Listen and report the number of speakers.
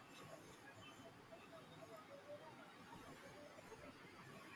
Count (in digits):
0